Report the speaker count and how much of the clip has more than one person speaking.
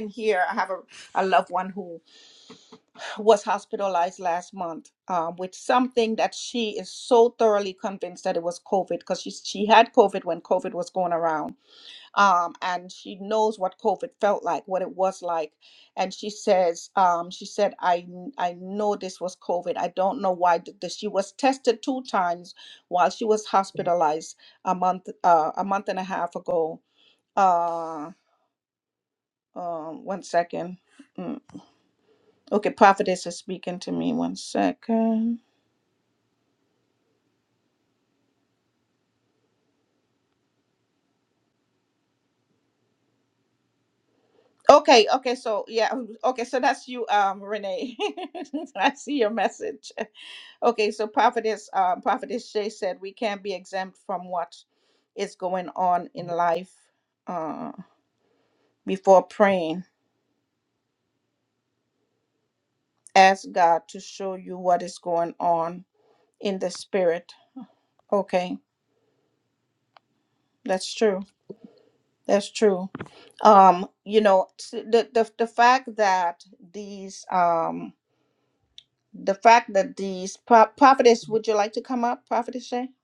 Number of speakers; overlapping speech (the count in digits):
1, no overlap